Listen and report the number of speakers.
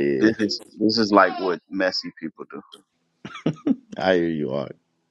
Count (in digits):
2